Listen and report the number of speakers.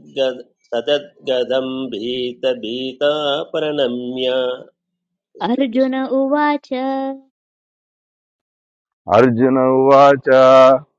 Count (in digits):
3